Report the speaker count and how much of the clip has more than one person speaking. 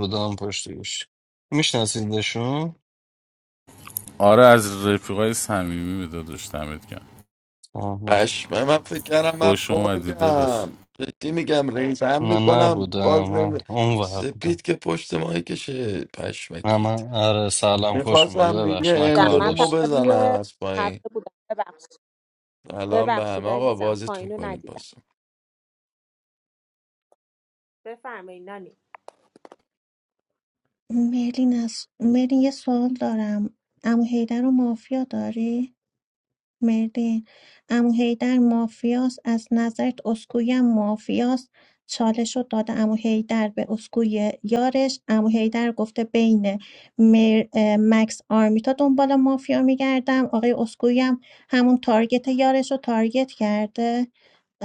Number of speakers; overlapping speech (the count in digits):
5, about 15%